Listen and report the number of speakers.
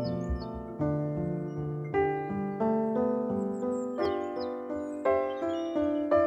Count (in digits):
0